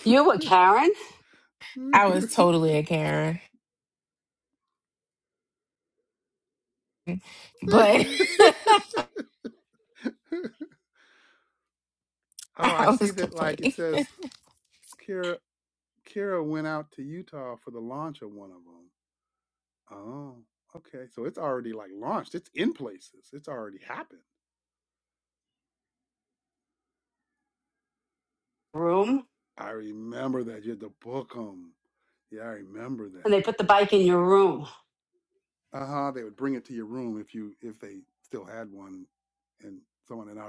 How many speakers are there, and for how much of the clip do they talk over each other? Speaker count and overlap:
three, about 3%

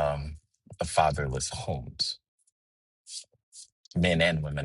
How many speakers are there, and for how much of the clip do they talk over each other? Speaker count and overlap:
one, no overlap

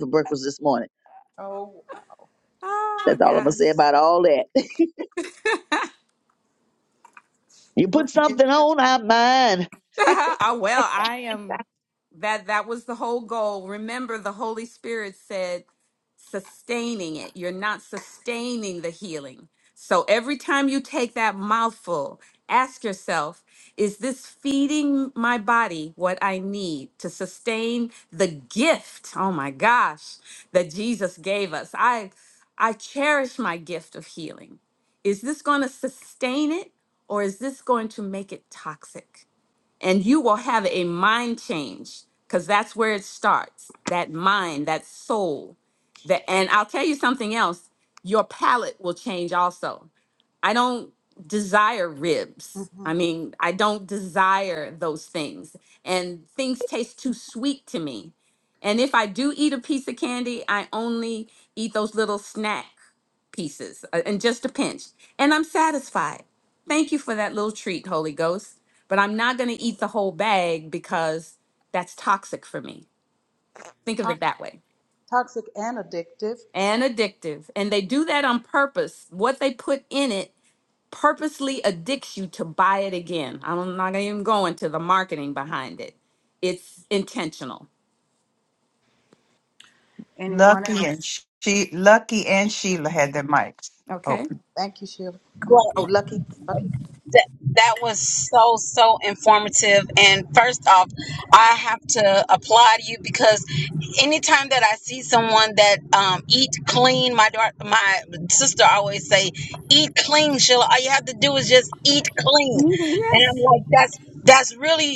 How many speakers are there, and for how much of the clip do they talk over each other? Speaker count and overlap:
five, about 2%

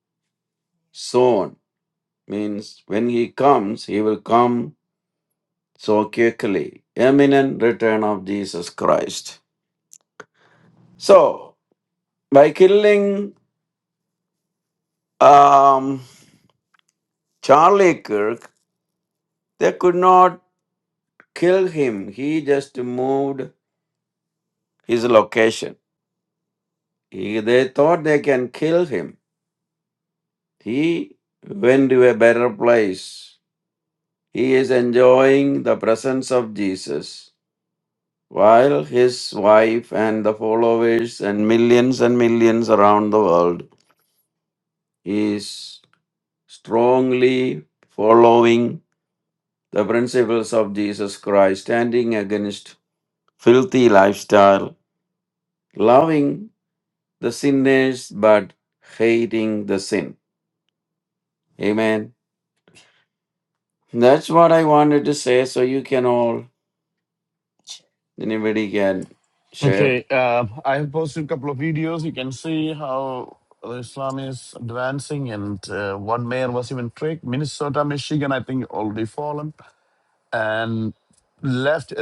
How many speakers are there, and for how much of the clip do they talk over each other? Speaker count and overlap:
two, under 1%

